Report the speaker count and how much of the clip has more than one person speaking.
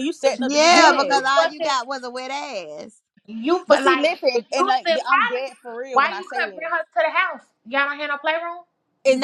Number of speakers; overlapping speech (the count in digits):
3, about 43%